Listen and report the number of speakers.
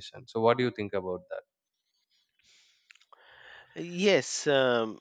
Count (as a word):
two